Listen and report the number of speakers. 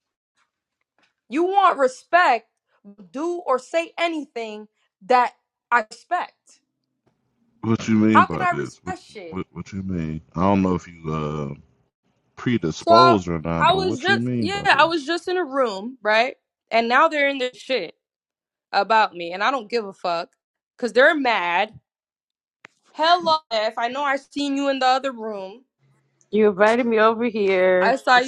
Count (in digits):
3